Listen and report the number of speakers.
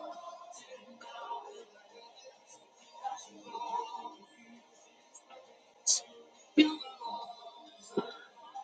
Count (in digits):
0